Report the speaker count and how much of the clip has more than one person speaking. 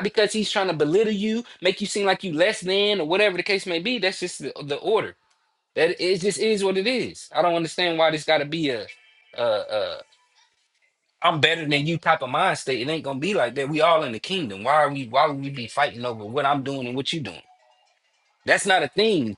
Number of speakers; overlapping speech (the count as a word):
one, no overlap